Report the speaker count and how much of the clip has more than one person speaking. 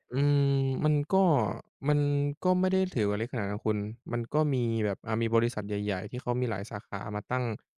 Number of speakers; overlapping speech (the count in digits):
1, no overlap